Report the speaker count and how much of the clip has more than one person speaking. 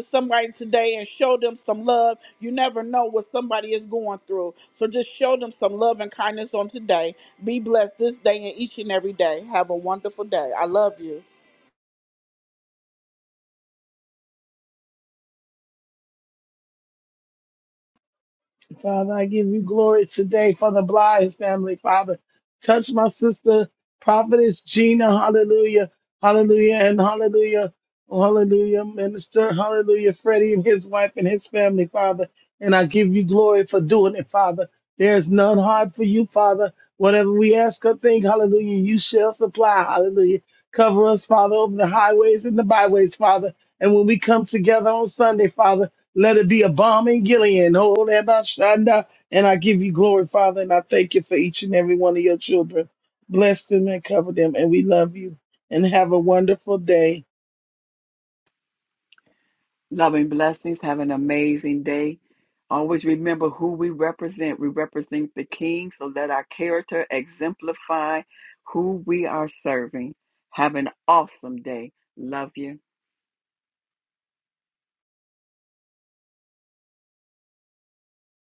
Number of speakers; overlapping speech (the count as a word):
three, no overlap